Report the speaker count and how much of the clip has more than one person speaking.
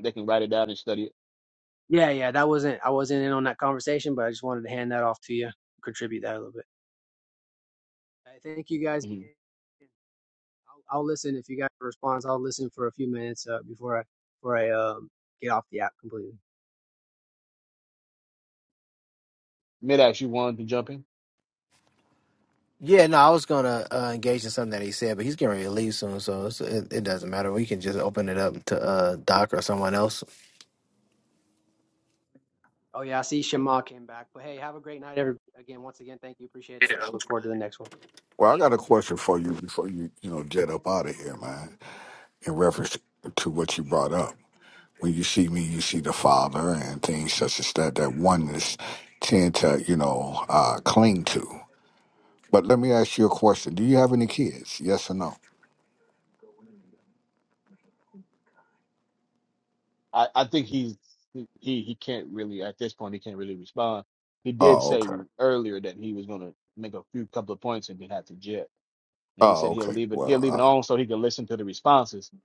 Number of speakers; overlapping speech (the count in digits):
4, about 3%